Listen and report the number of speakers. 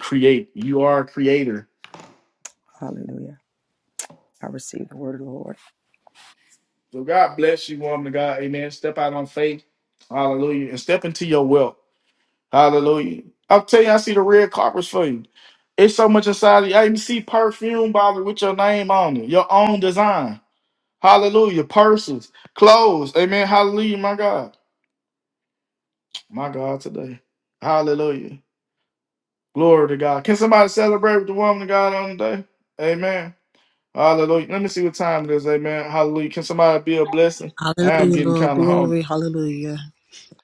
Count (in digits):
3